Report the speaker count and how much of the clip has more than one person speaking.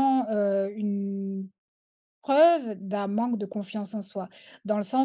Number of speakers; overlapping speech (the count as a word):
one, no overlap